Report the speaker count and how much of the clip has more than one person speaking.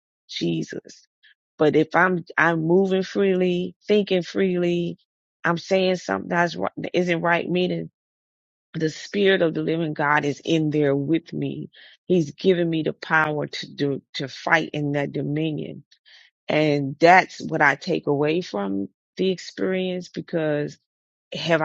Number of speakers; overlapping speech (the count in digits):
1, no overlap